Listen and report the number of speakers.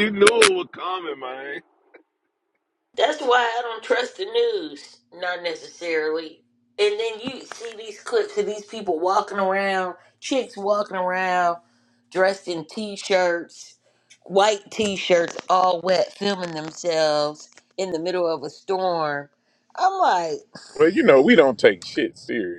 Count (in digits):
3